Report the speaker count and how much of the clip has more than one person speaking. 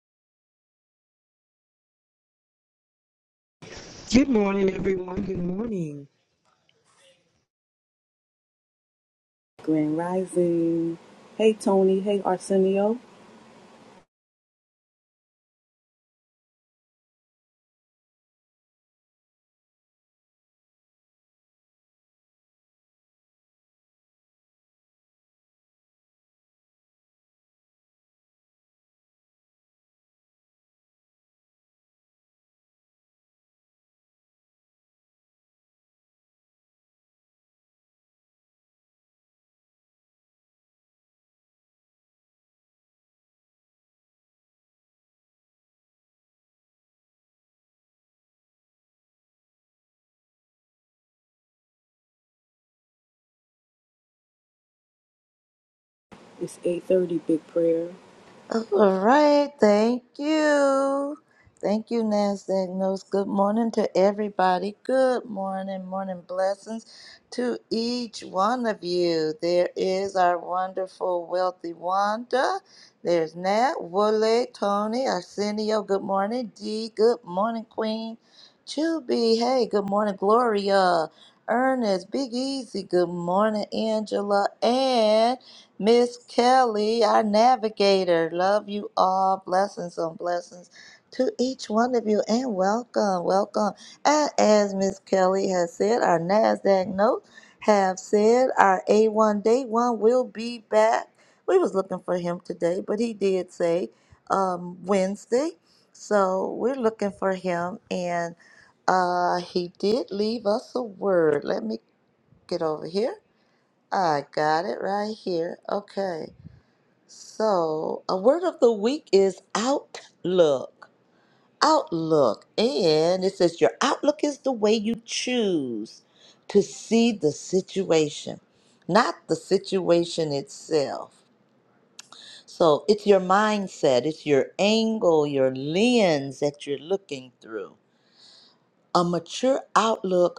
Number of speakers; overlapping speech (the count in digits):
3, no overlap